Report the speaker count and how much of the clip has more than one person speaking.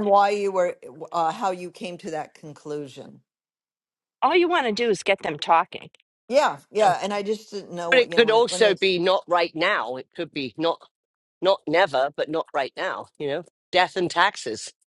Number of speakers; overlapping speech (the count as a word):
three, about 6%